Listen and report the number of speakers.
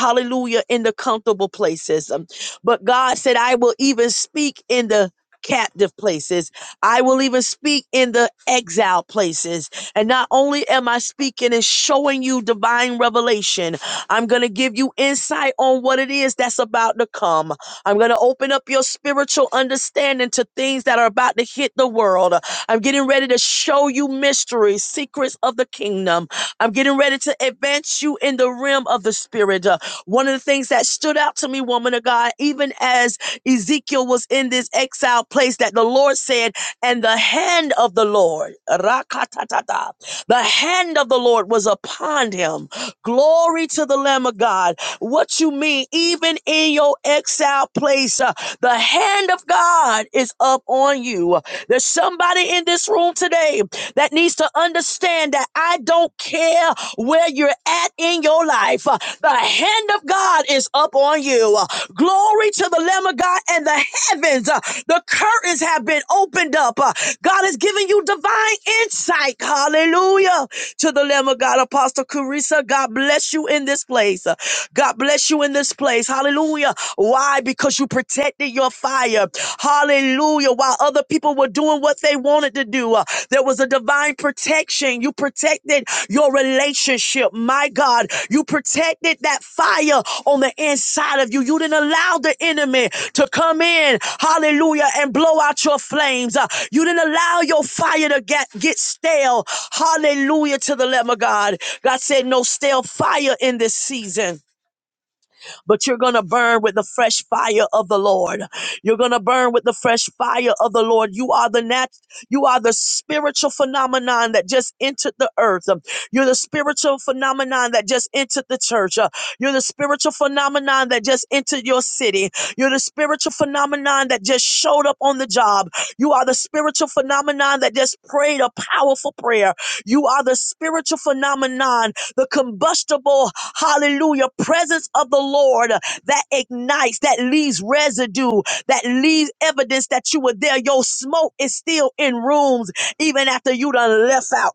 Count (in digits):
1